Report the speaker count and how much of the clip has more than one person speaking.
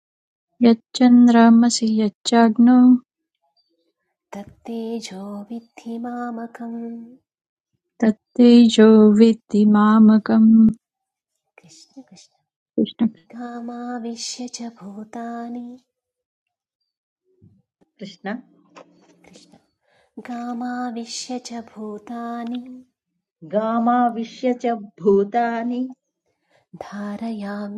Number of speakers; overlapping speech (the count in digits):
3, no overlap